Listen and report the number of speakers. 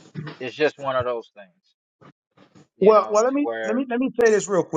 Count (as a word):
two